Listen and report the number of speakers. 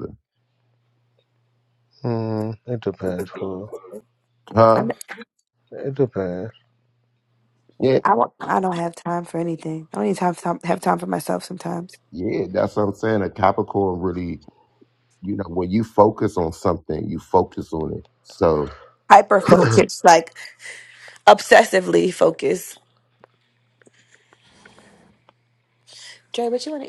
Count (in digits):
3